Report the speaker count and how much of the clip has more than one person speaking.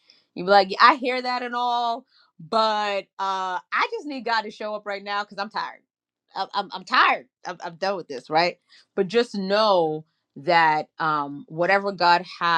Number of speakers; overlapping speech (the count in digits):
1, no overlap